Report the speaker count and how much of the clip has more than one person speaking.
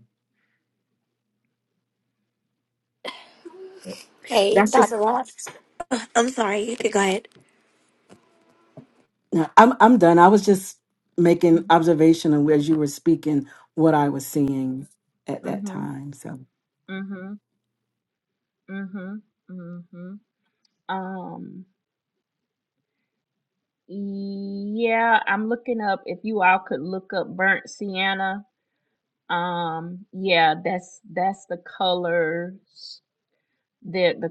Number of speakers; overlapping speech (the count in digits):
3, about 2%